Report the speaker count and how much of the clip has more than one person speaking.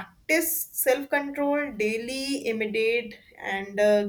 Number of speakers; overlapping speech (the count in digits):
1, no overlap